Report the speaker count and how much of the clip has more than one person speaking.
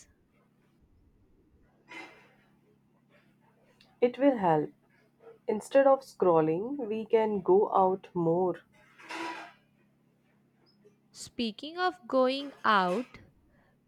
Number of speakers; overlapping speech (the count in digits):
2, no overlap